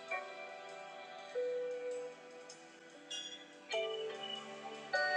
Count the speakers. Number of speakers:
0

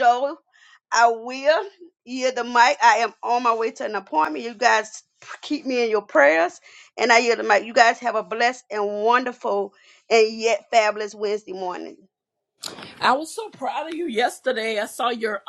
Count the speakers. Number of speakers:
2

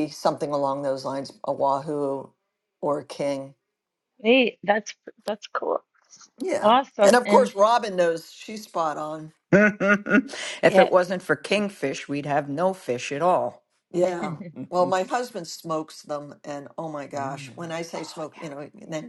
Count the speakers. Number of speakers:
3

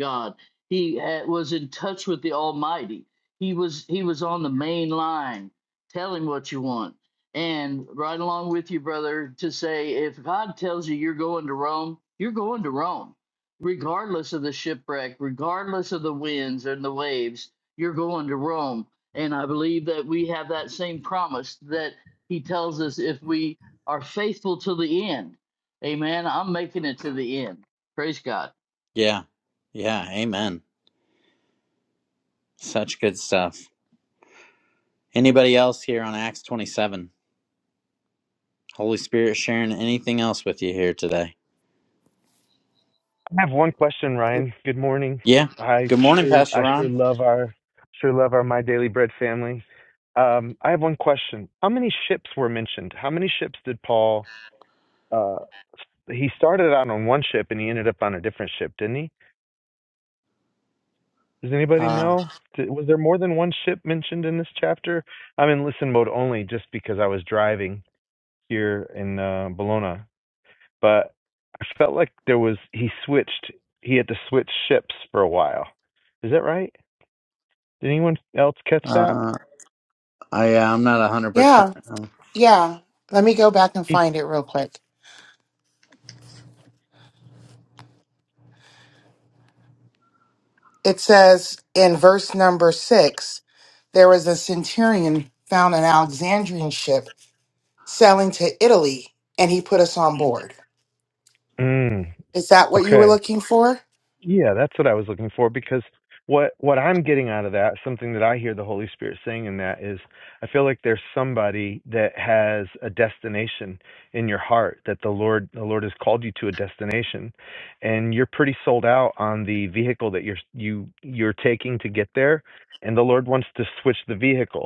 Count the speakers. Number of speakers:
4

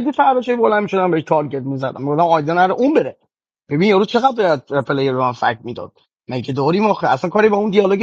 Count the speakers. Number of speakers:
1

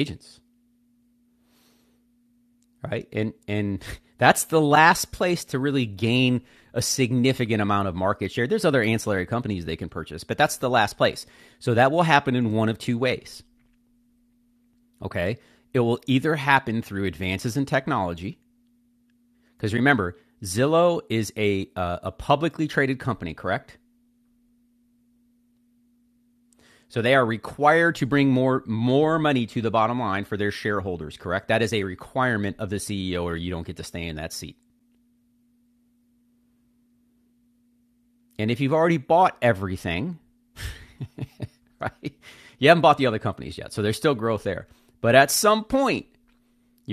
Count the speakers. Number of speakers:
1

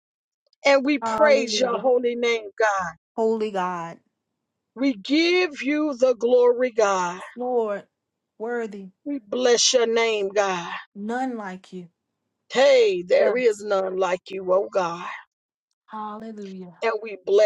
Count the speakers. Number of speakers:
2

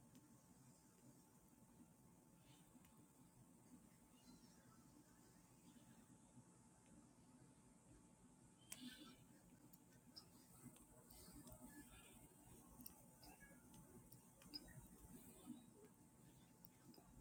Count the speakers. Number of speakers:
0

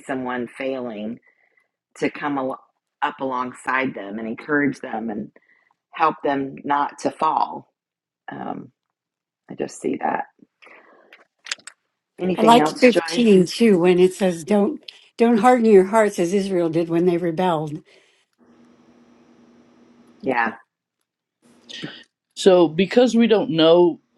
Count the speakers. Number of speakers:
3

